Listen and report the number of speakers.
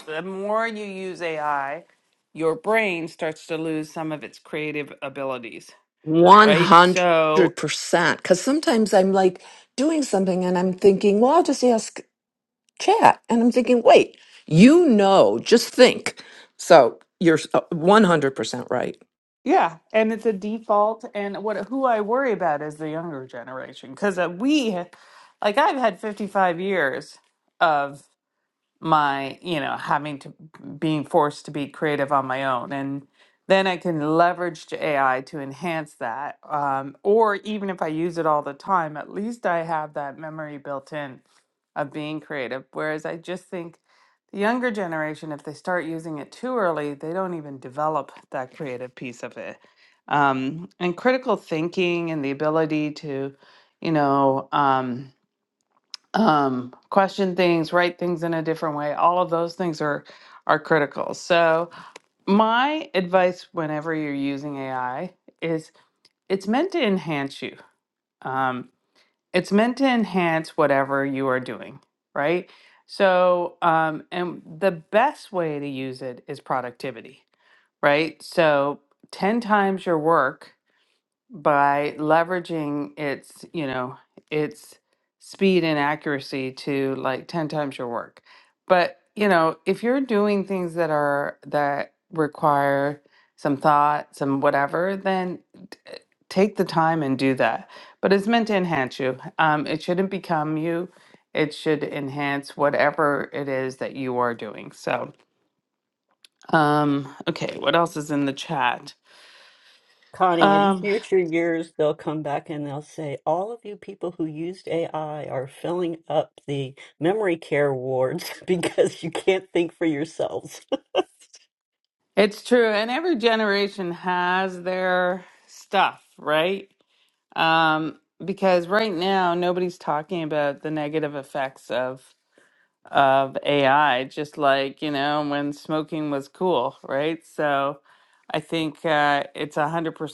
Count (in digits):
3